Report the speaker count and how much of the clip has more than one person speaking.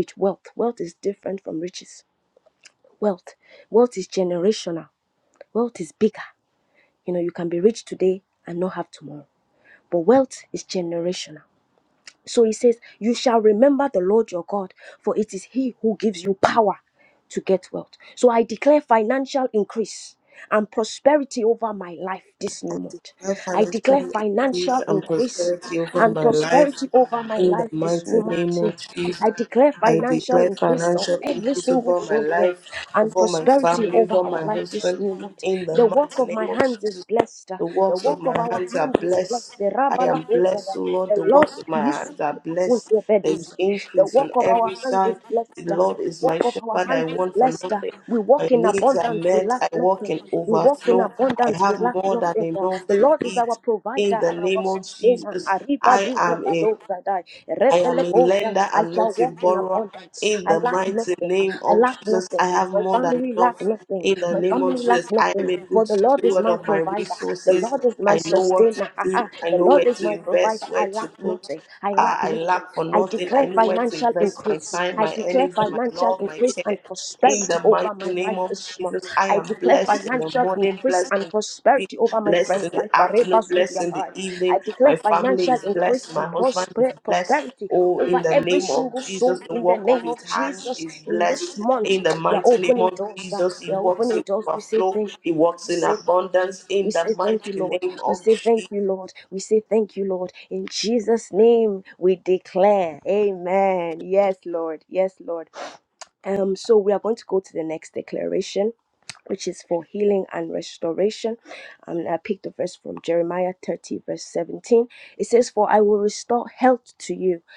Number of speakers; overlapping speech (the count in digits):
2, about 51%